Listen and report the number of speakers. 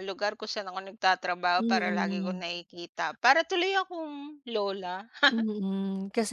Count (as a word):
two